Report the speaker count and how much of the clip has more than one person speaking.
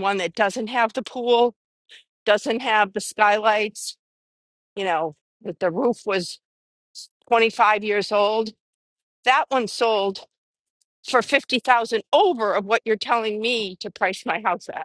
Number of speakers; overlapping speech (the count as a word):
one, no overlap